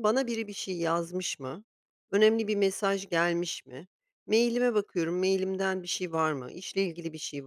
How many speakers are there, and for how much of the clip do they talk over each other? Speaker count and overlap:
one, no overlap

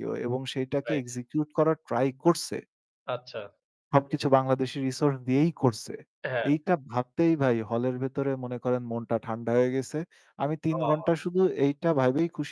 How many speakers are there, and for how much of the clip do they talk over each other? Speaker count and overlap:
two, about 6%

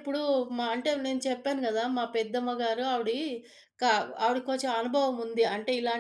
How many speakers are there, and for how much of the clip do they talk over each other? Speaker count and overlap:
one, no overlap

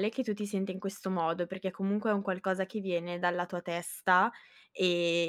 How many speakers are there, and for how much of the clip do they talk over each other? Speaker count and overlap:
one, no overlap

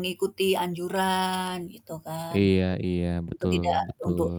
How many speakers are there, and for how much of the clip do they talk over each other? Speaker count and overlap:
two, about 26%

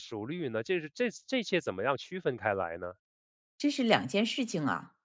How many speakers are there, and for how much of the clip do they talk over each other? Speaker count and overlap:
two, no overlap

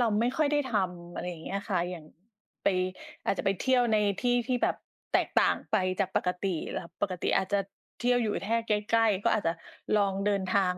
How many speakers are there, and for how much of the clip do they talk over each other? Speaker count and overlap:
one, no overlap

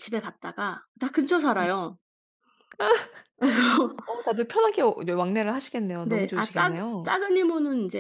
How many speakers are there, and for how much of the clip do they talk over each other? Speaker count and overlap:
two, about 14%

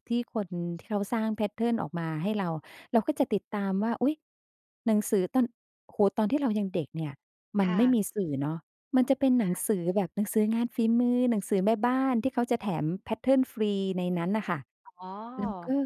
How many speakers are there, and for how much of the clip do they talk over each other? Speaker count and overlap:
two, about 4%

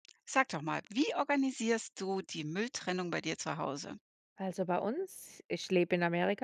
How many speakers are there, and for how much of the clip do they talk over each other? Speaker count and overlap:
two, no overlap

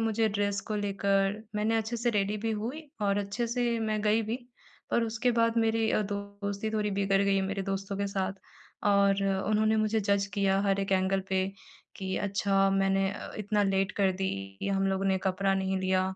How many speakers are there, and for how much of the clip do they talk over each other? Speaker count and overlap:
one, no overlap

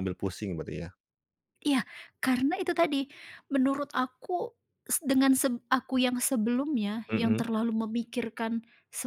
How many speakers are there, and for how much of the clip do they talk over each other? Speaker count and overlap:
two, about 4%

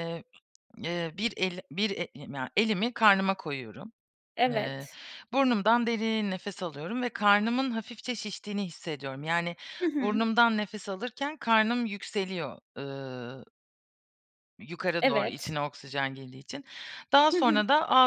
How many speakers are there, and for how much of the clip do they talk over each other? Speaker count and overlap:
two, about 7%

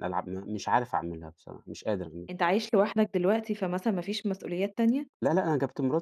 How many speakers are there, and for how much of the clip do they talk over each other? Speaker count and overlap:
two, no overlap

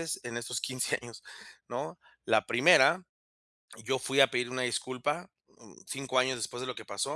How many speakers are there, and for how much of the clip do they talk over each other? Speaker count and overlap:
one, no overlap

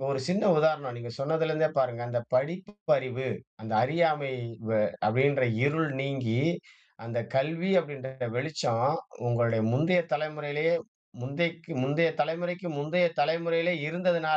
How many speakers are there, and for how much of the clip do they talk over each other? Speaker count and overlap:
one, no overlap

